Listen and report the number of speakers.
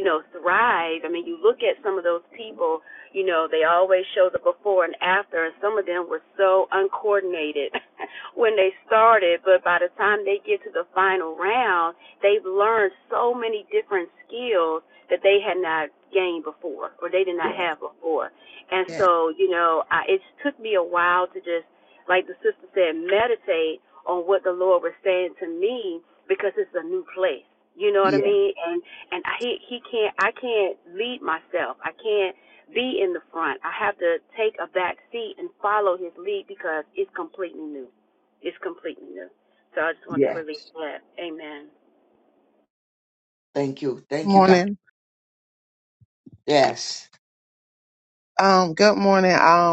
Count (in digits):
3